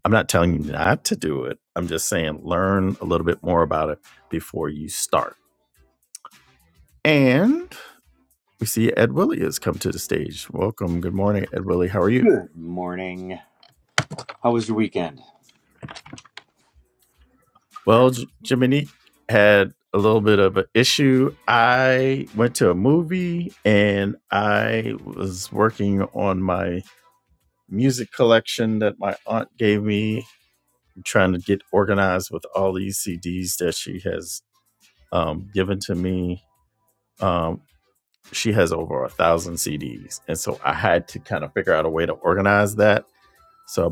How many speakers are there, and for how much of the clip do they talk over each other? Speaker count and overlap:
two, under 1%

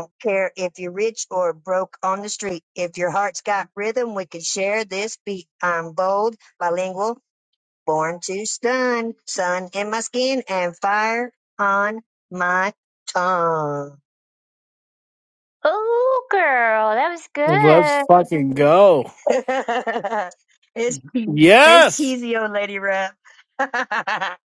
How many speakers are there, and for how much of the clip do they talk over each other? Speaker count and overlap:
three, about 4%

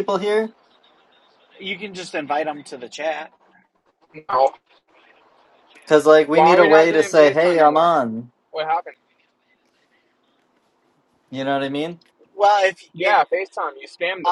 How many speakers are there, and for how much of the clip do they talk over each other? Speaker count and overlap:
three, about 13%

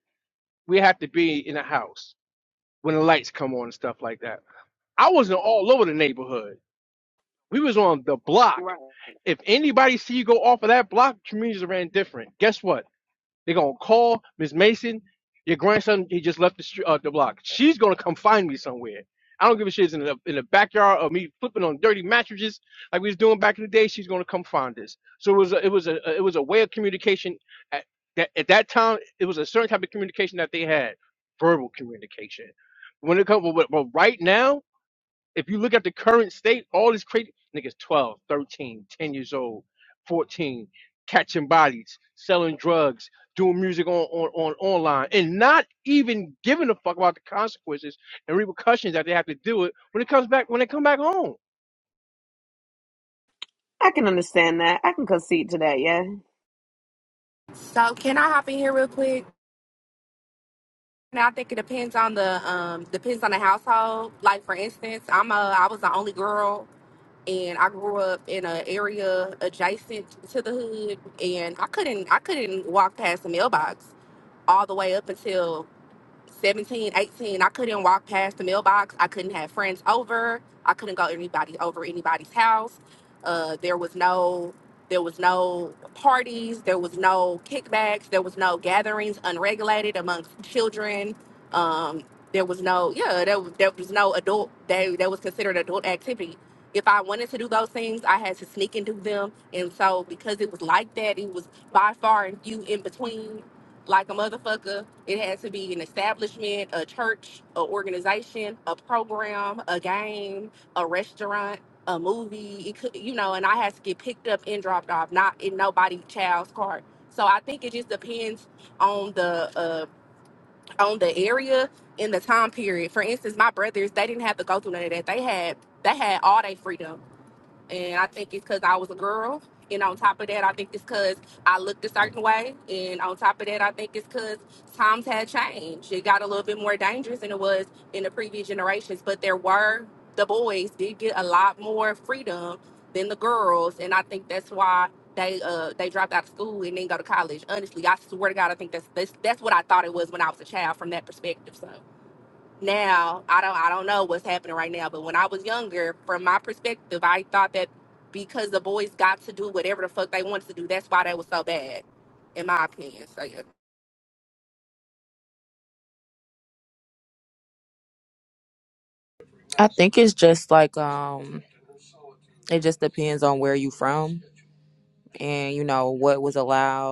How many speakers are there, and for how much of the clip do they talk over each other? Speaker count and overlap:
four, under 1%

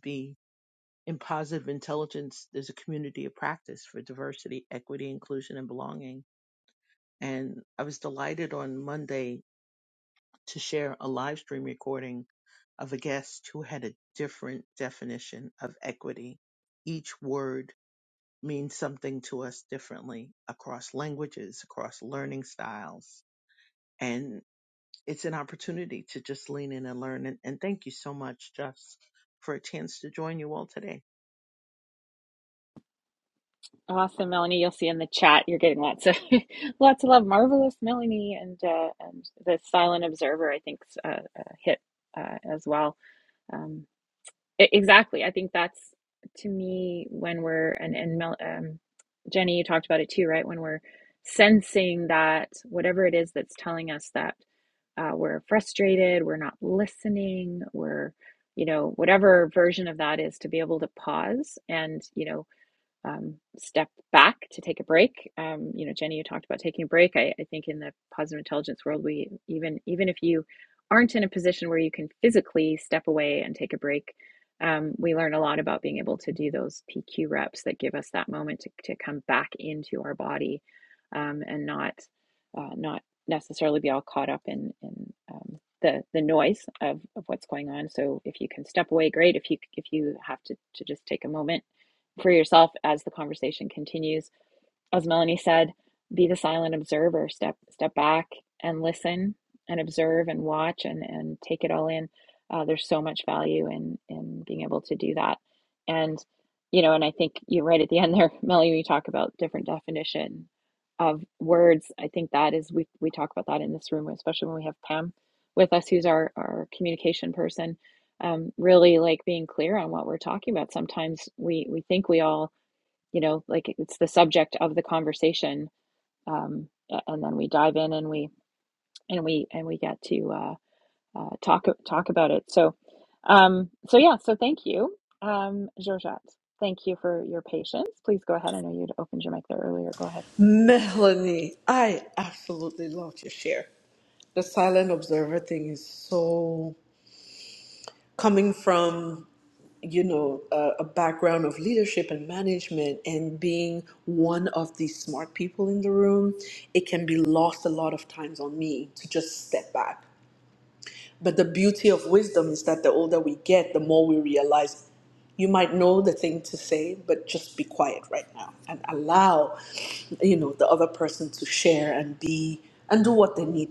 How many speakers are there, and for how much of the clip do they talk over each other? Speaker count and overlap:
three, no overlap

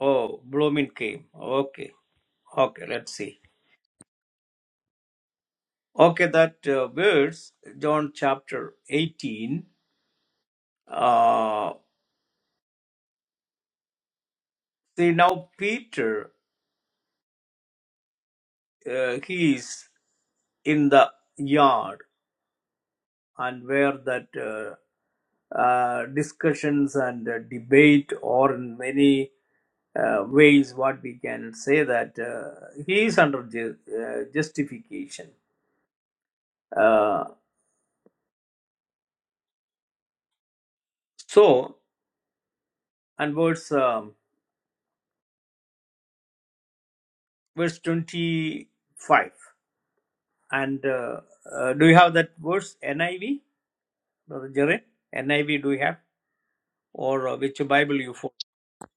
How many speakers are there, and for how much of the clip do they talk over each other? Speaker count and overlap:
one, no overlap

